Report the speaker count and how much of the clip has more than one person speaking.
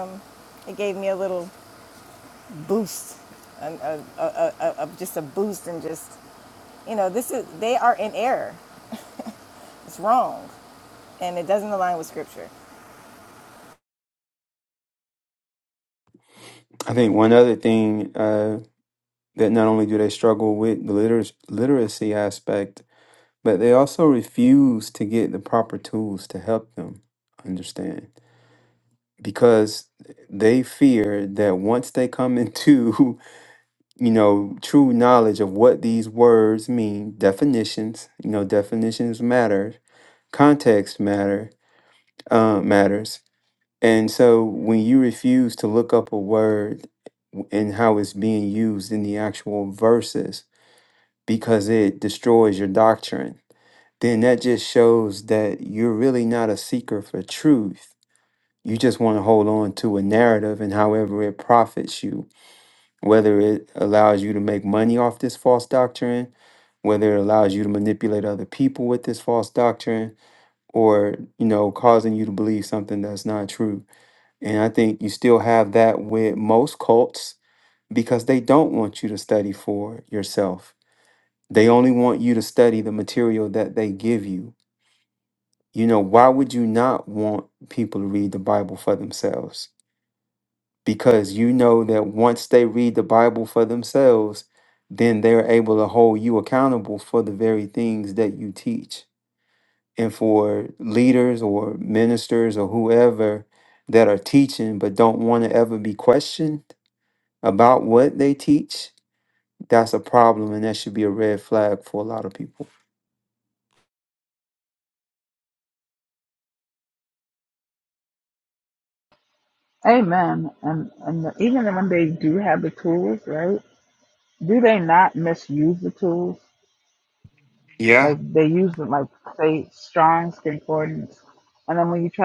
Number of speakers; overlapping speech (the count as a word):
three, under 1%